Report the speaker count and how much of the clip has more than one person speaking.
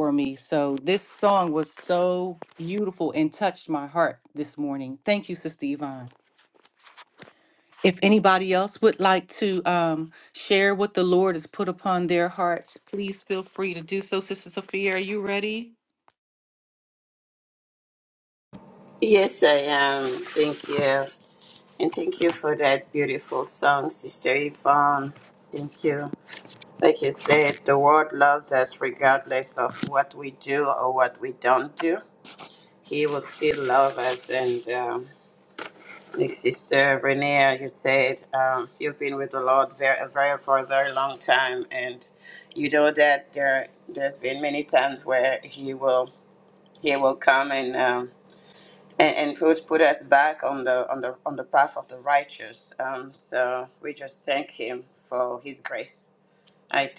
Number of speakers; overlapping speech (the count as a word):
two, no overlap